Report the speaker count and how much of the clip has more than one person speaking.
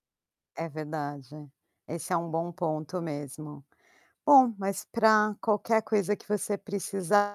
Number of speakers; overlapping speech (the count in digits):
1, no overlap